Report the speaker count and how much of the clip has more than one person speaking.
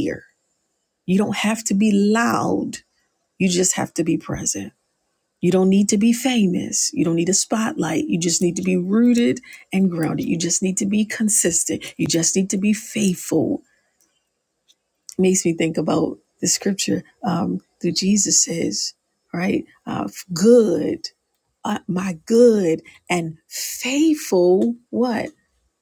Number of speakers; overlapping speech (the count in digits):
1, no overlap